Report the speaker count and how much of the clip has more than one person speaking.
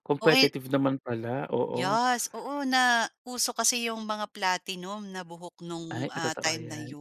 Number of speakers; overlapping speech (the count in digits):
2, about 23%